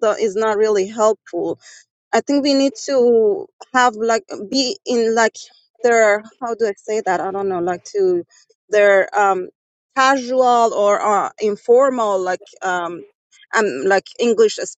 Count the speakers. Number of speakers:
one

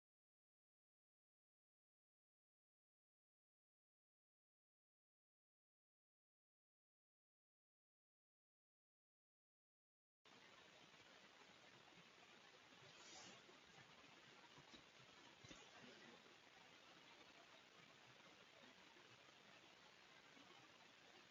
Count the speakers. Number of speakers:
zero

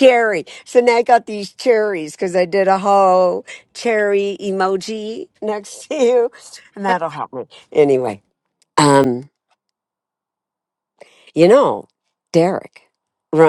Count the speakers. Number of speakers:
one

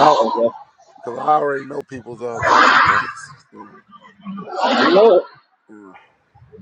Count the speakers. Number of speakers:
two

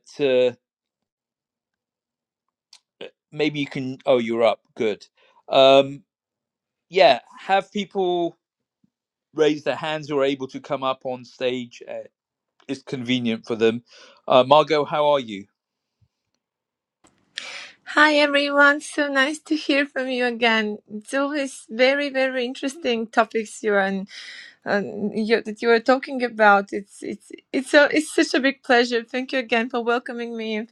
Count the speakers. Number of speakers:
two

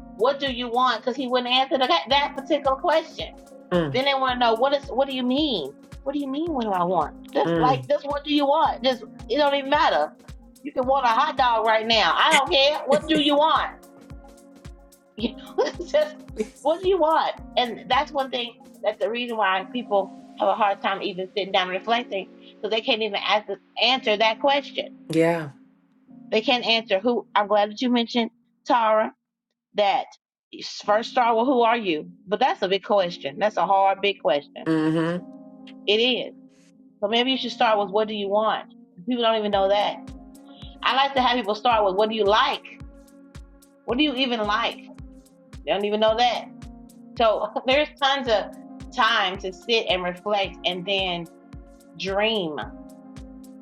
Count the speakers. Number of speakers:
two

